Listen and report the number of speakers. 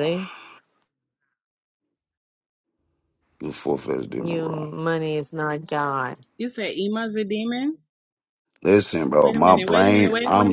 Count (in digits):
3